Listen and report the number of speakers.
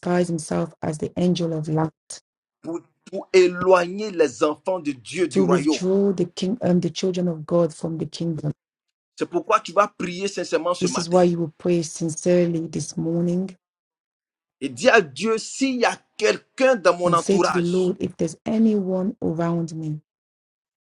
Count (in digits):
2